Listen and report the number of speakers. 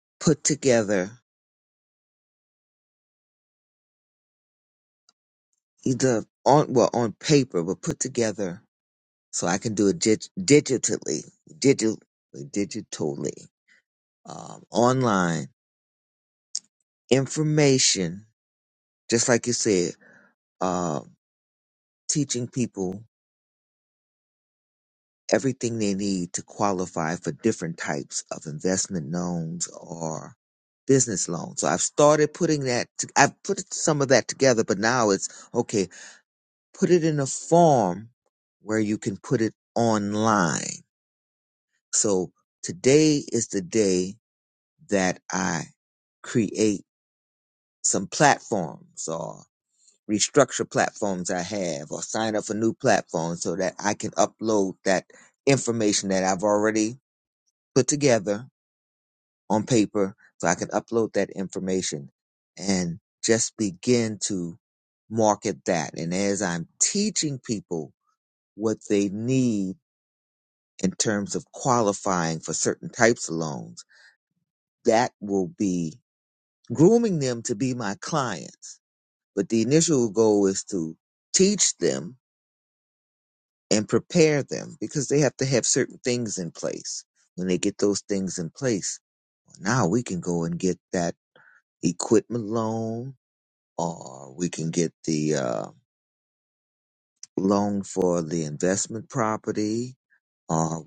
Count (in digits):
1